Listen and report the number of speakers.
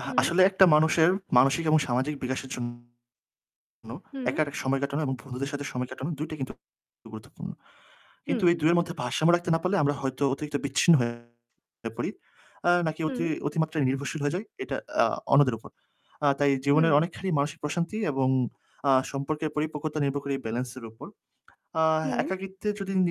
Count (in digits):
2